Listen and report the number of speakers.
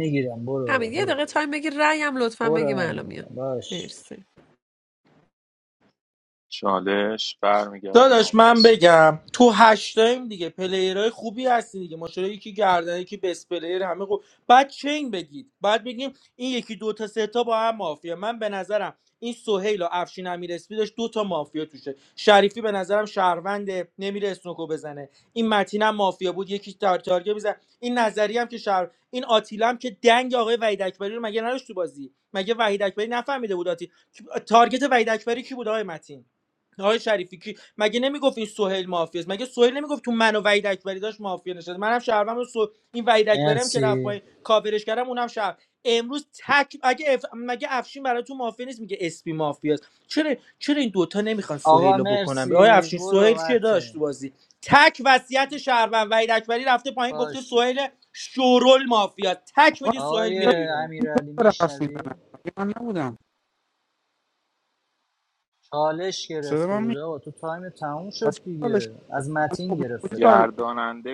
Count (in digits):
5